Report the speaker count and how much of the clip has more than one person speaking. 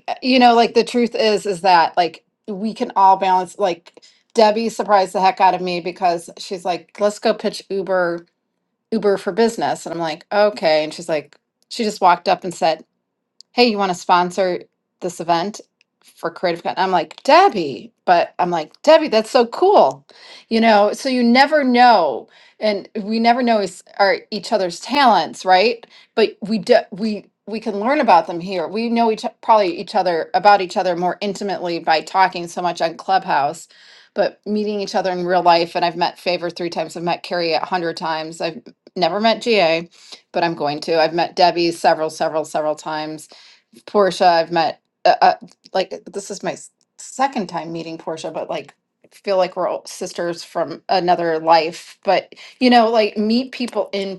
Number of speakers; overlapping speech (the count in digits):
1, no overlap